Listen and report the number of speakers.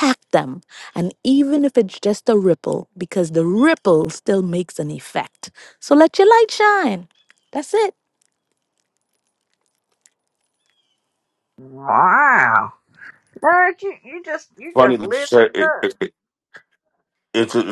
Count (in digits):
3